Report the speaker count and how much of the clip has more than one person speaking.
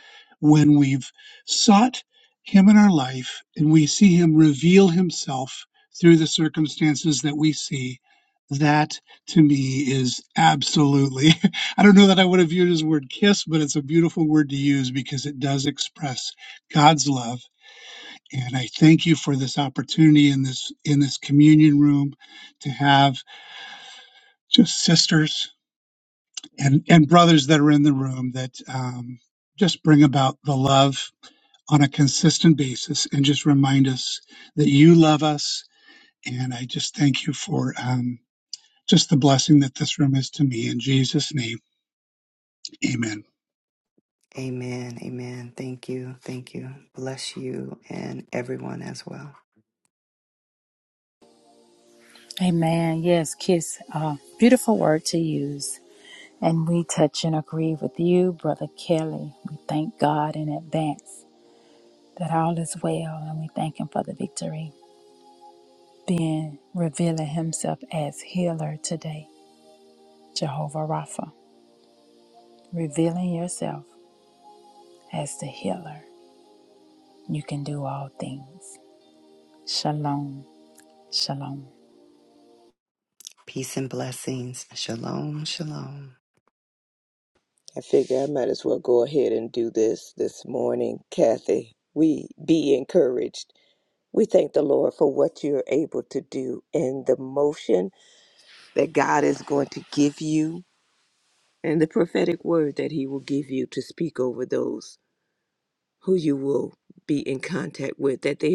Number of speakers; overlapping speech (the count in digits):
4, no overlap